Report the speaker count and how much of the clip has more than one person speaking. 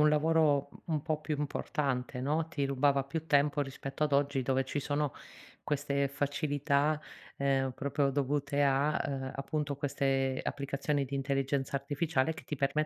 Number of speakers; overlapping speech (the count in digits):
1, no overlap